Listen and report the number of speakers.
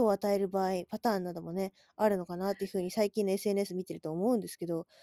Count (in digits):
1